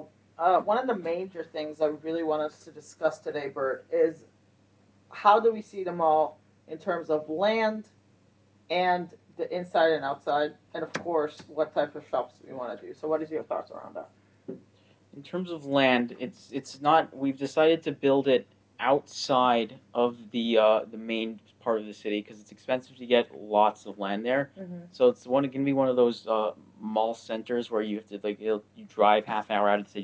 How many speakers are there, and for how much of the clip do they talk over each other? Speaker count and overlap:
two, no overlap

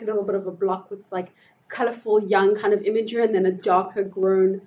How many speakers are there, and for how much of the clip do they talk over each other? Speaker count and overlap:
one, no overlap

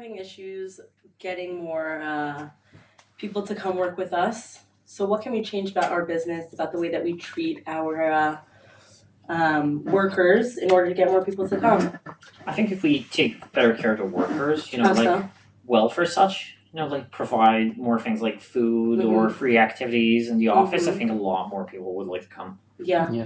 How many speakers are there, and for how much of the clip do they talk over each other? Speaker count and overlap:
two, about 4%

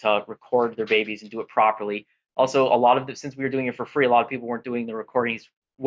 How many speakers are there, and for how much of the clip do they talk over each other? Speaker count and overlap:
one, no overlap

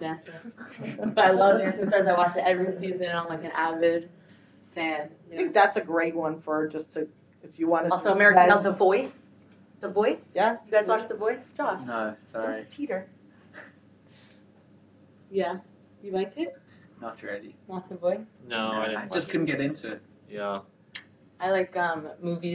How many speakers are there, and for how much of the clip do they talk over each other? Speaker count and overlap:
four, about 11%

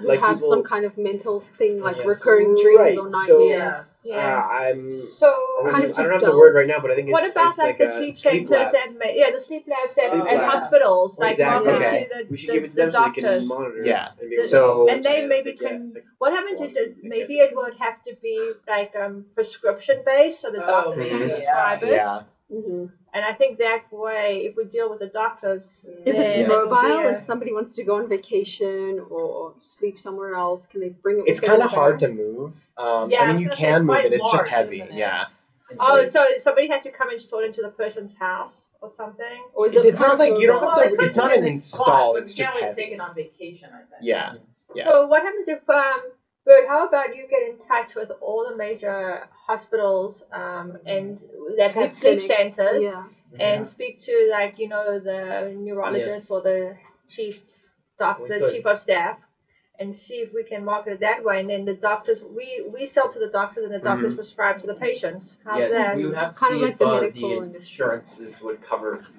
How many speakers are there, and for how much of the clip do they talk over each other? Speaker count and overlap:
six, about 39%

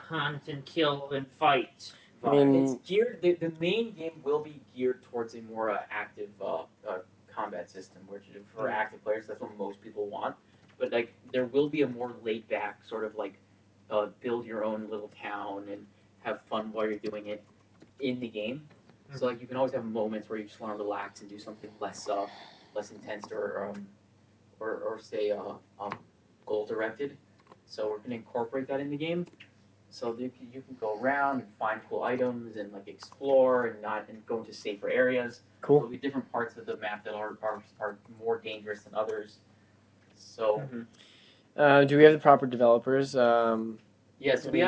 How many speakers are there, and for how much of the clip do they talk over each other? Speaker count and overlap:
three, about 4%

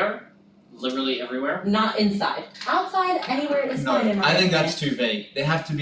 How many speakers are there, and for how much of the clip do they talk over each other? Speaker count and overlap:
three, about 17%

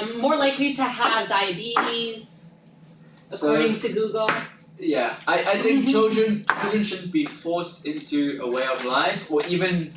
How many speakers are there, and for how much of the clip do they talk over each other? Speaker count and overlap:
two, about 3%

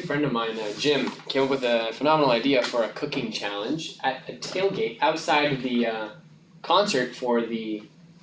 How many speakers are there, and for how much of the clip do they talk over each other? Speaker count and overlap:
one, no overlap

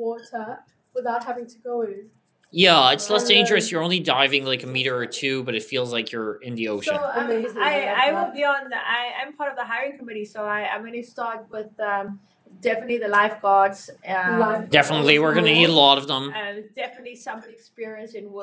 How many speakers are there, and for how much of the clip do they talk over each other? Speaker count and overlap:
three, about 26%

